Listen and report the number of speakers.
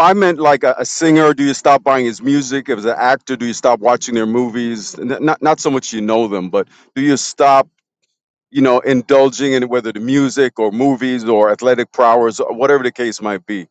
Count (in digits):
1